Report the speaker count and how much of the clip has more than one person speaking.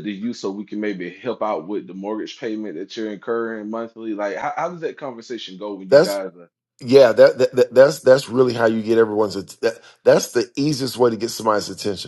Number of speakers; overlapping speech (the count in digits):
2, no overlap